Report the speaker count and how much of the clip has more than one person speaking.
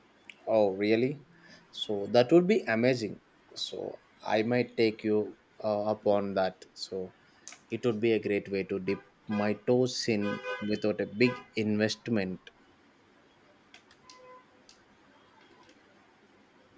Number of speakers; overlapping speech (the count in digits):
1, no overlap